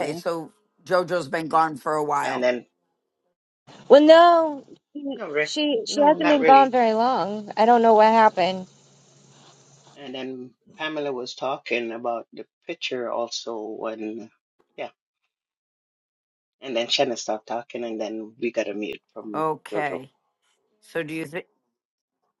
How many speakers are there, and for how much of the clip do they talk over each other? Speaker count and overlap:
three, about 8%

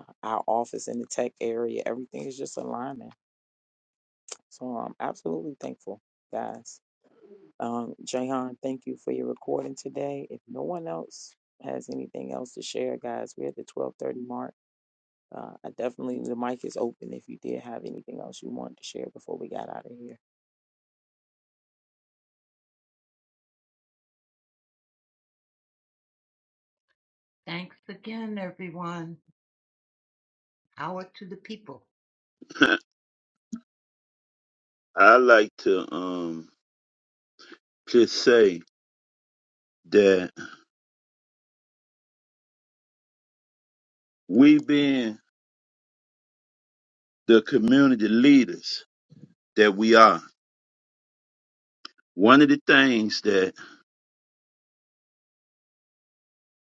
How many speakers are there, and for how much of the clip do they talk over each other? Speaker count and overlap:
three, no overlap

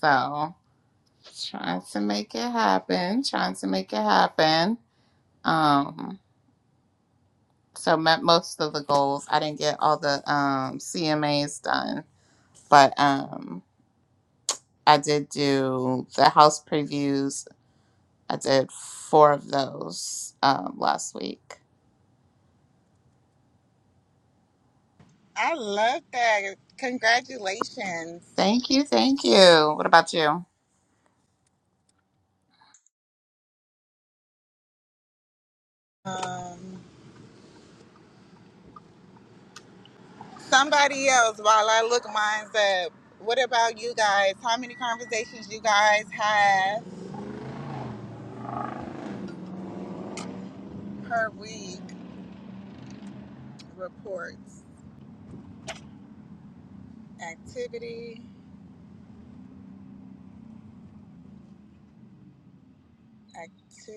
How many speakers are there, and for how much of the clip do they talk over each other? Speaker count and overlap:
two, no overlap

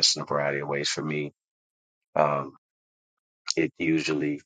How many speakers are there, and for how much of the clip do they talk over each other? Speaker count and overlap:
one, no overlap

